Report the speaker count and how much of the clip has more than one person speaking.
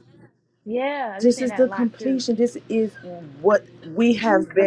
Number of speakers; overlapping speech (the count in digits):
2, about 24%